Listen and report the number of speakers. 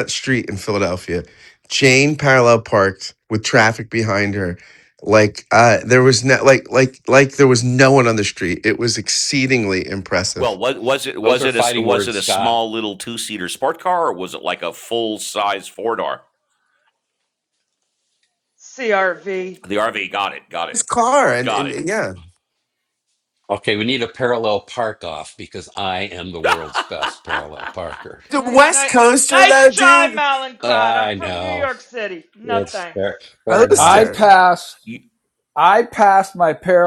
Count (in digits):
5